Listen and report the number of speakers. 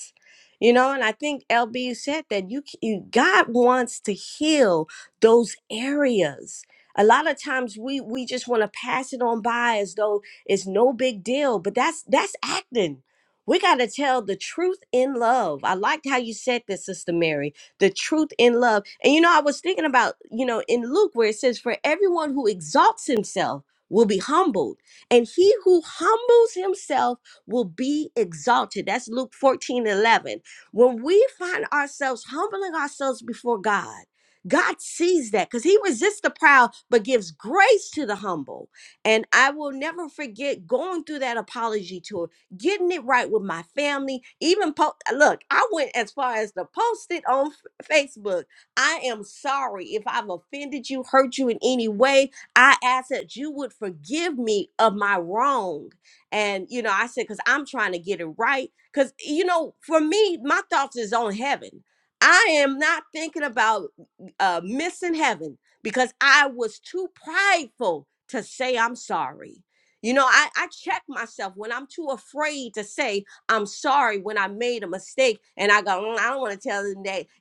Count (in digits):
1